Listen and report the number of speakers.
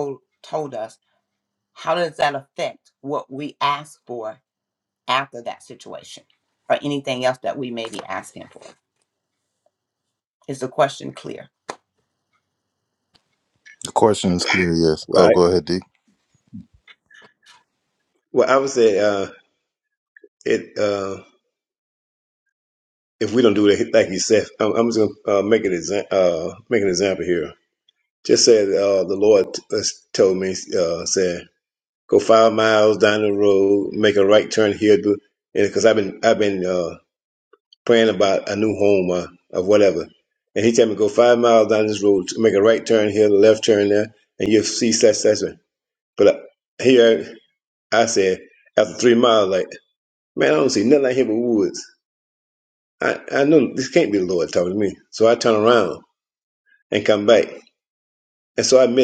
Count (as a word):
three